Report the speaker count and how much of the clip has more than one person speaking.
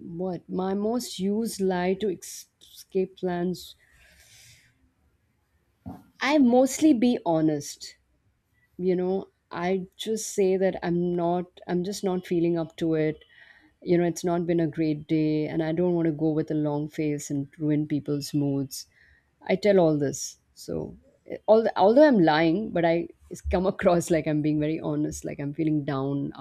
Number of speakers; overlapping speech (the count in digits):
1, no overlap